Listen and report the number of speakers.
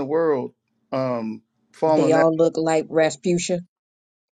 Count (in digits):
2